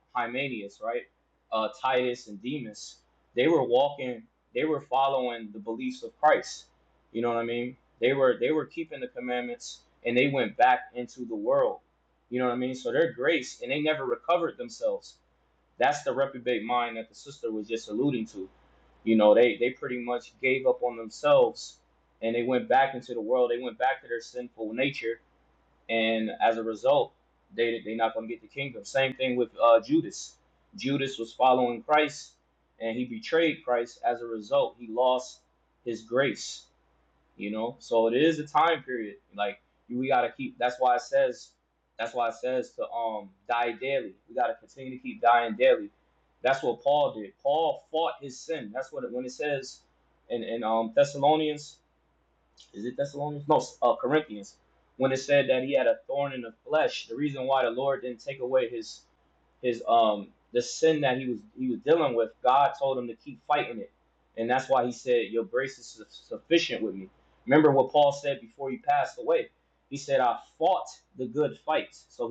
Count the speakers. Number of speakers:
one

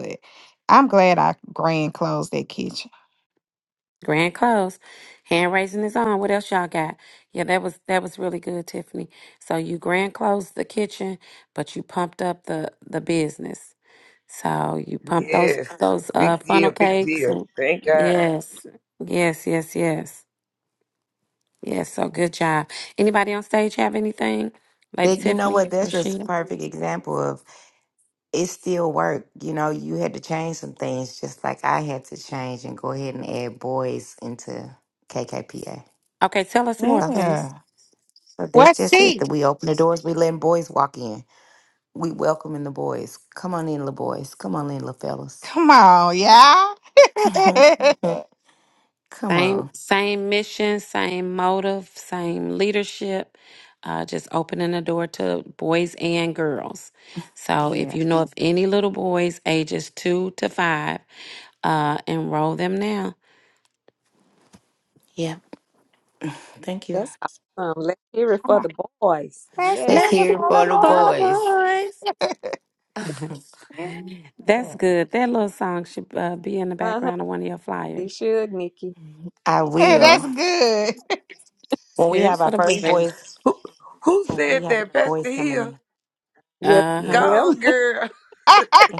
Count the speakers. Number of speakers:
five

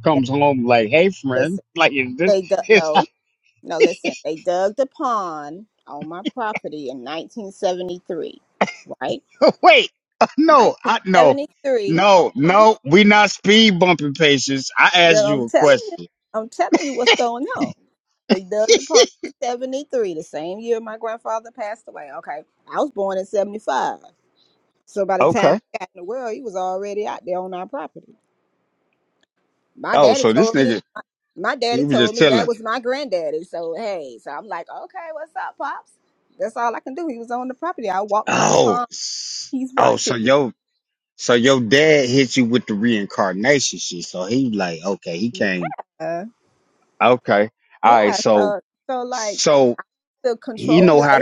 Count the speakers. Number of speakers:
two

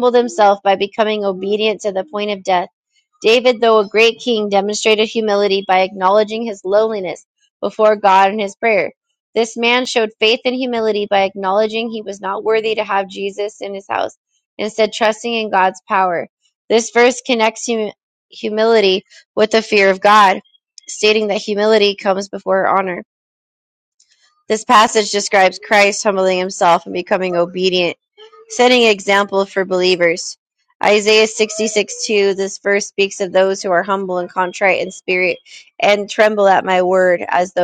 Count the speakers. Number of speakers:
one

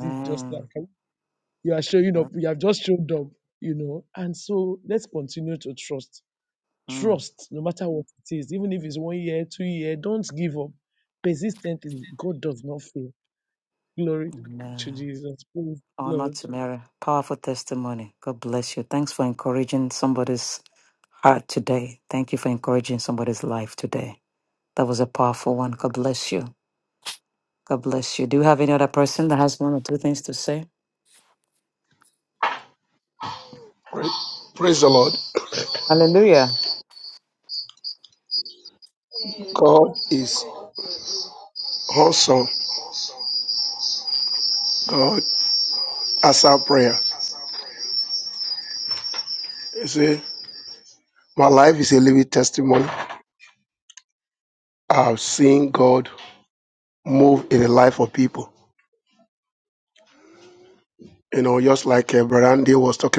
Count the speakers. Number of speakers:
three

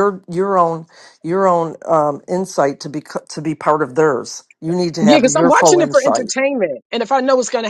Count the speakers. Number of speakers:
two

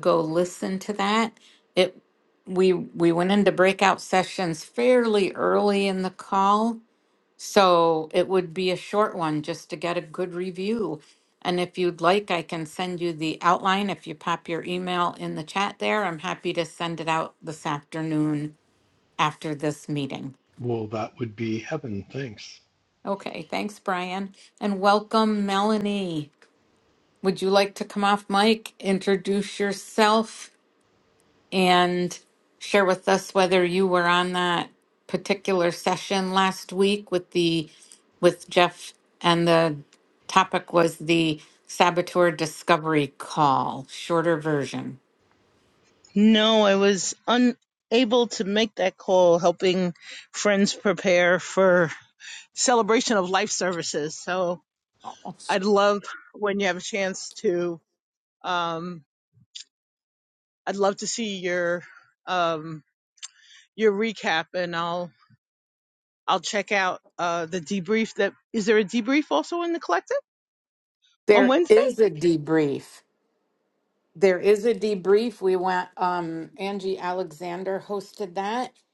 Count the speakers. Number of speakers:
three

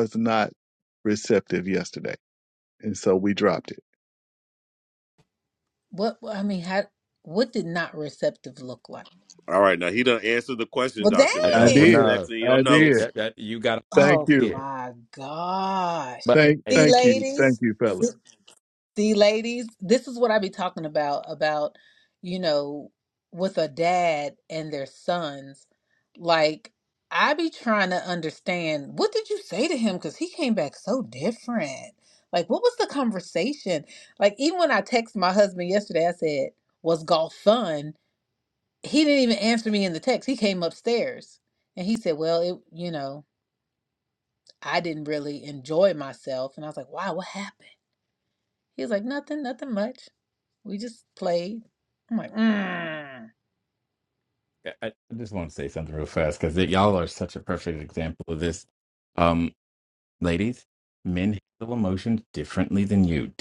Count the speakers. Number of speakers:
four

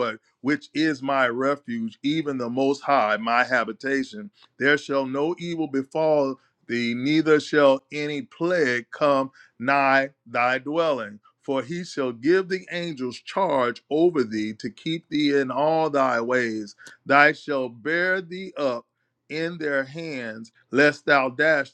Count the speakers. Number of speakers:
one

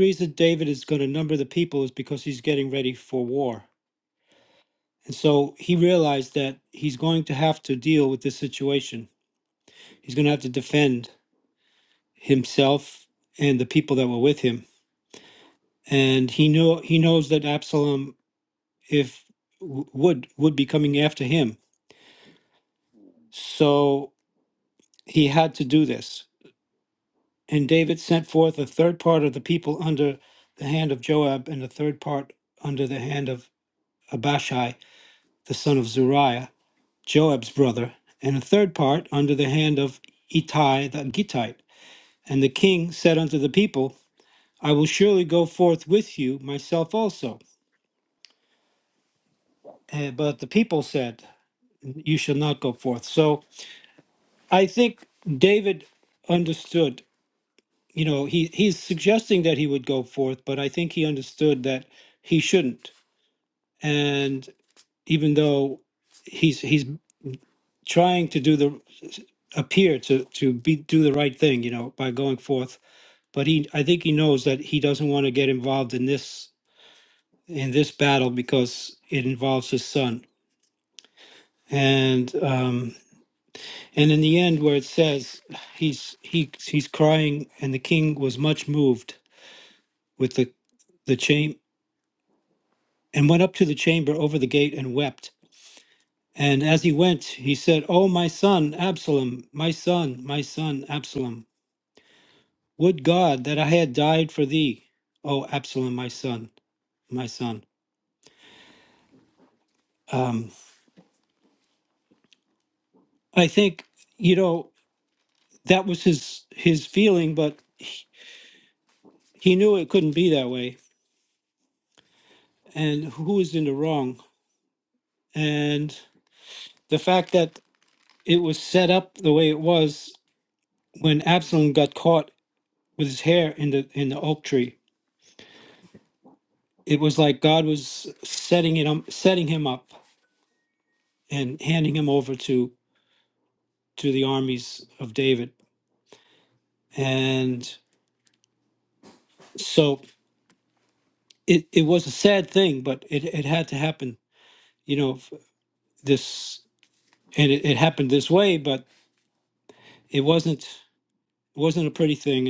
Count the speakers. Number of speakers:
one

